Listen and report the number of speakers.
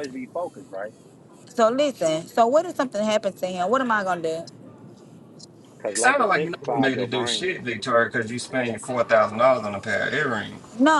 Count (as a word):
three